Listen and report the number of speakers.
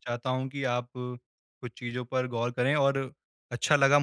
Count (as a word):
one